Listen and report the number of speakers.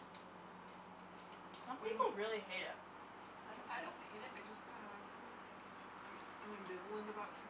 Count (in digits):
2